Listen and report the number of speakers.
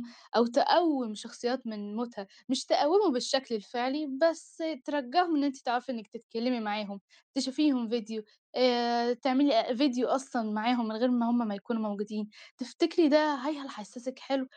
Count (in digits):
1